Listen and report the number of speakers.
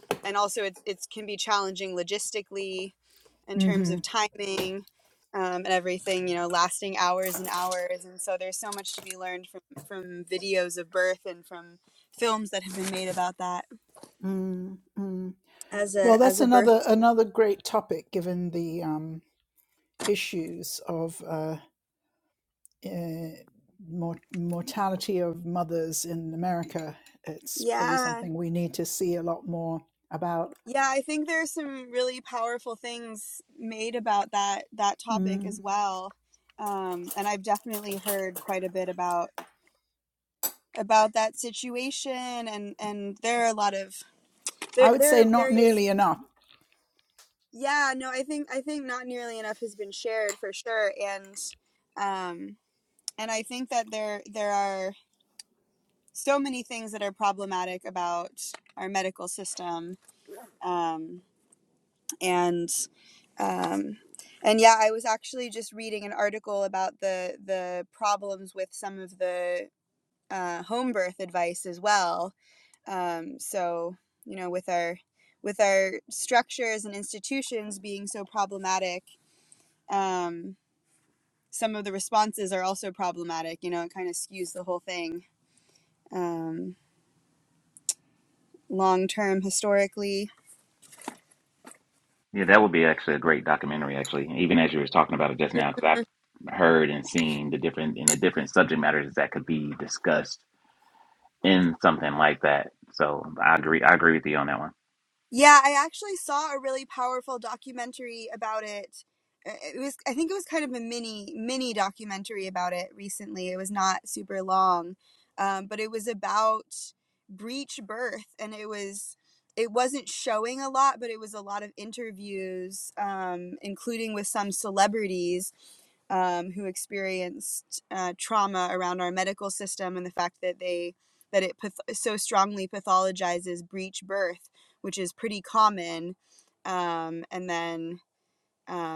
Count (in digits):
3